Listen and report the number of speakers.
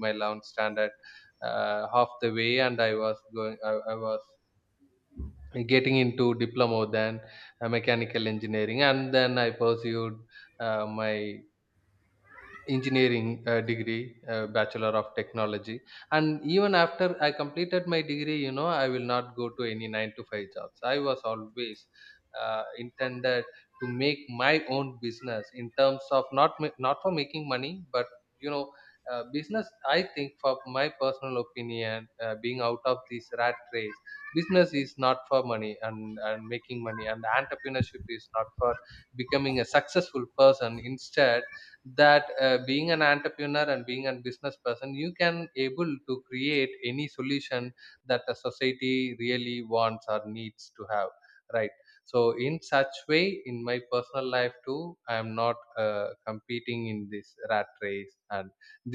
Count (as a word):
one